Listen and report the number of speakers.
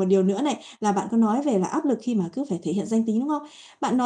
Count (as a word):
one